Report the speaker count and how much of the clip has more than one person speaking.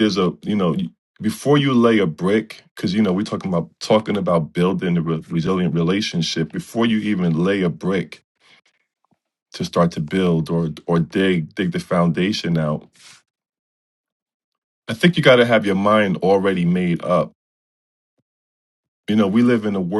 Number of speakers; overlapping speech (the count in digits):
1, no overlap